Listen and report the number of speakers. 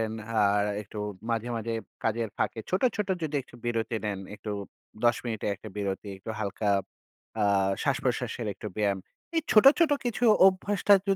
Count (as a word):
one